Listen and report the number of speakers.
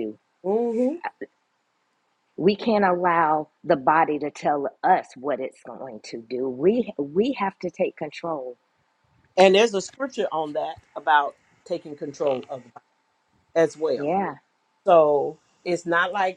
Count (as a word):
two